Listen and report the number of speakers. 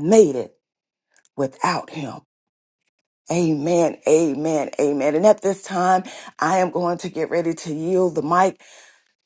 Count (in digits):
1